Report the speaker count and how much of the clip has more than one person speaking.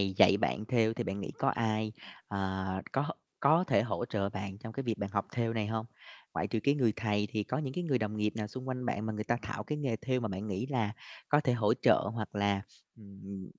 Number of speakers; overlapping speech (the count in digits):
1, no overlap